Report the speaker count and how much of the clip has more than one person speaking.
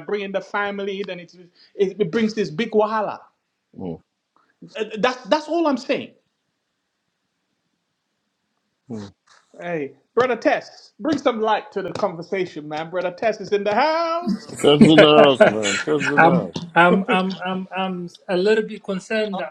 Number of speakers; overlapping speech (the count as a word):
three, about 2%